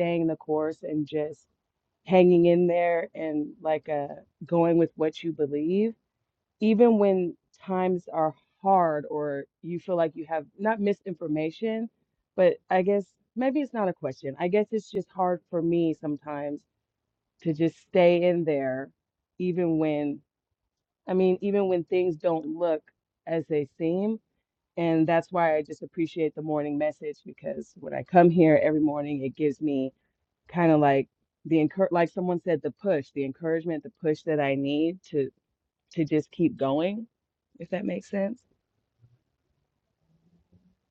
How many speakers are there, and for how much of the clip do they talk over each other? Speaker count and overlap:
1, no overlap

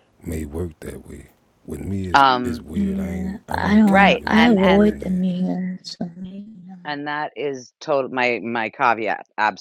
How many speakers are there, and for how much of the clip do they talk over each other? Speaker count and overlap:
3, about 31%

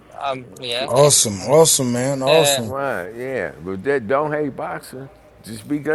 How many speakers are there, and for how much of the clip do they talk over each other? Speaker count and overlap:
3, about 9%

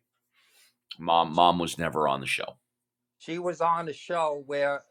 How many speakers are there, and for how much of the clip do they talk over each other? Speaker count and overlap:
2, no overlap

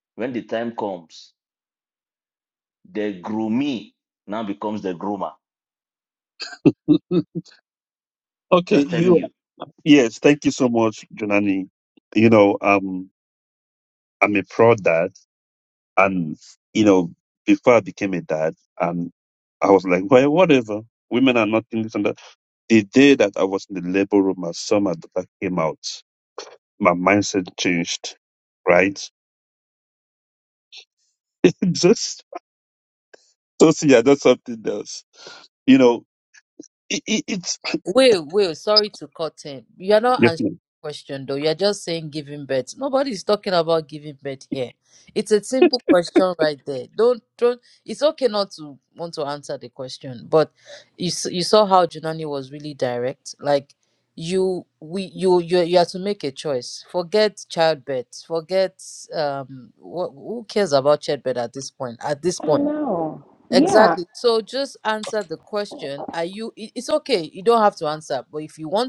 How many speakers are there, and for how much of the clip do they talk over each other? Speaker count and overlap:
4, about 2%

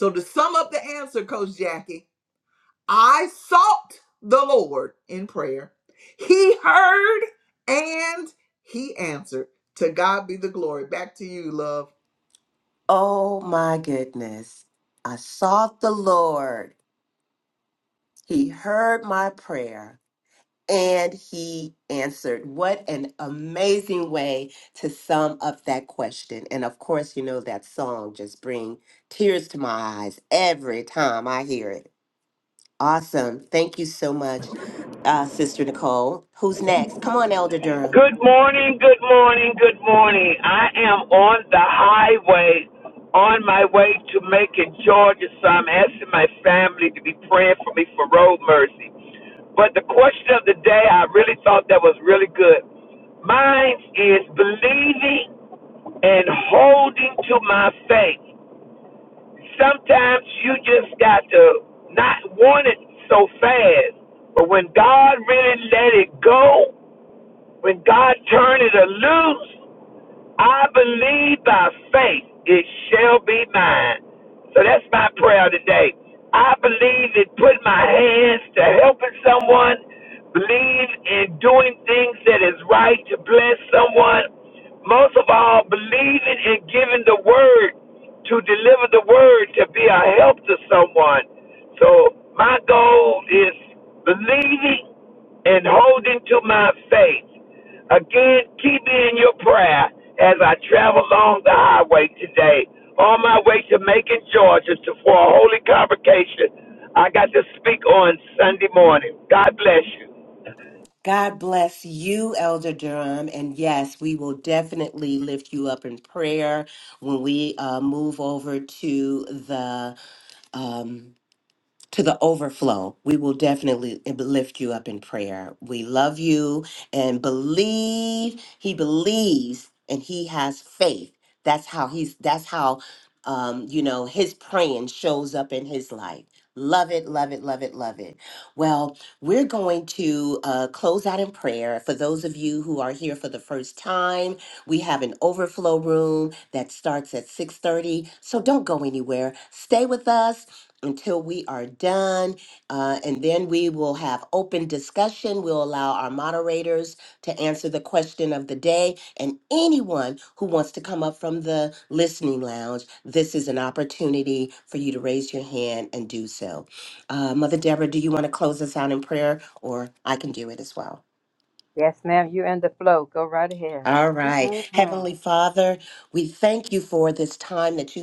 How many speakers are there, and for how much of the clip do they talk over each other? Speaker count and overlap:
4, about 1%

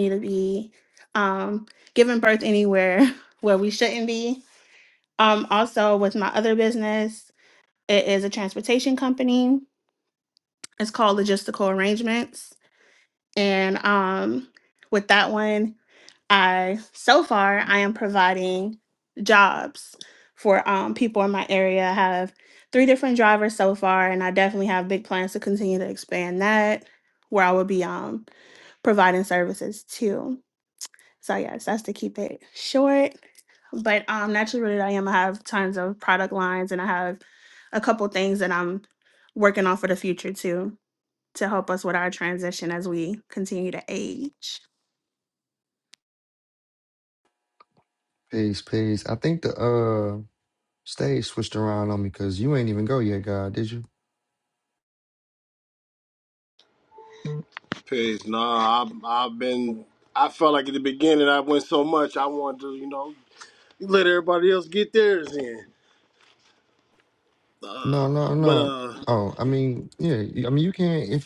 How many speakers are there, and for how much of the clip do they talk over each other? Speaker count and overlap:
3, under 1%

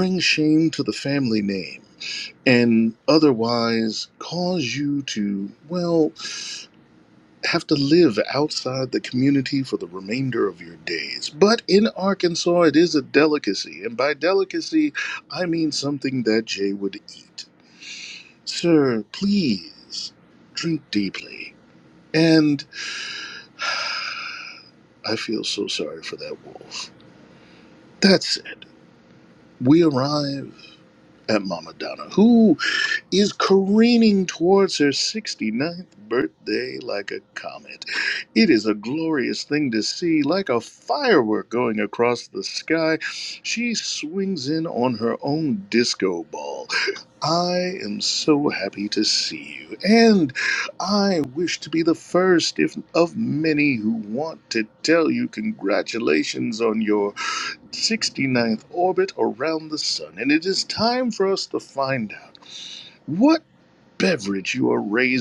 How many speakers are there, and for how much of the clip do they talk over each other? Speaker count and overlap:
1, no overlap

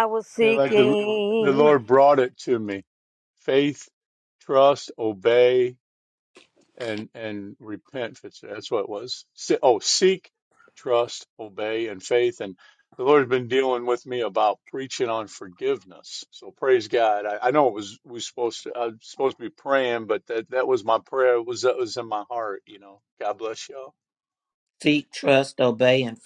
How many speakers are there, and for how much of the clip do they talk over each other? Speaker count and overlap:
3, about 2%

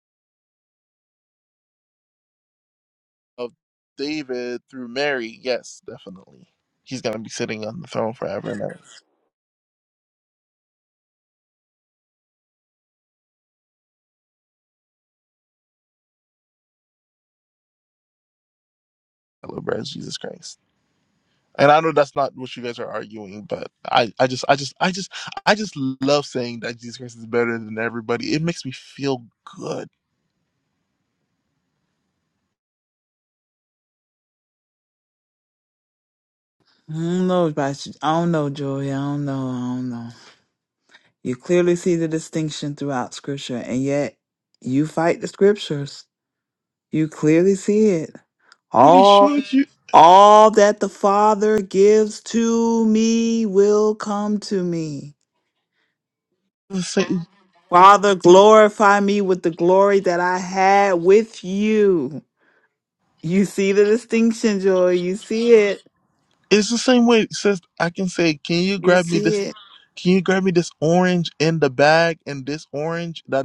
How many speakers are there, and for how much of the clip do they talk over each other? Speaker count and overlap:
2, about 2%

